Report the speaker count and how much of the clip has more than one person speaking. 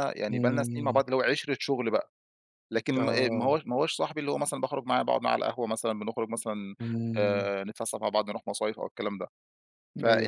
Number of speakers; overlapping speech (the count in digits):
2, about 18%